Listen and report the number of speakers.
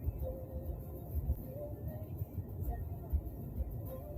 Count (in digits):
0